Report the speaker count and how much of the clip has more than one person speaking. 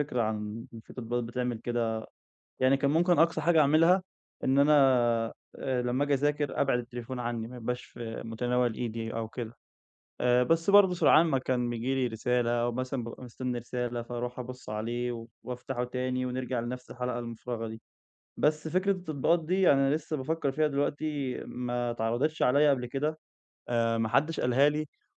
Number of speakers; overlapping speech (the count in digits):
1, no overlap